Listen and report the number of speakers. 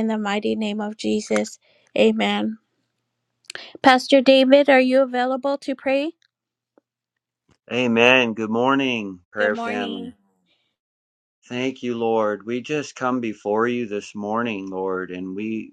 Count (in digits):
2